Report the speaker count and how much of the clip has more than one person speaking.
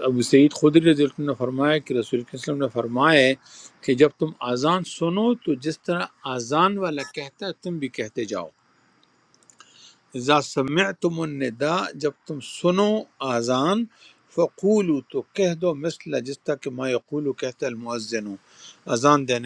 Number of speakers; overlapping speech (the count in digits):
1, no overlap